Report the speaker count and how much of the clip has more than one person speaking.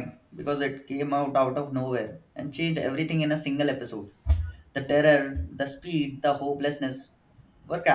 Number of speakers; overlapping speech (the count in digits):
1, no overlap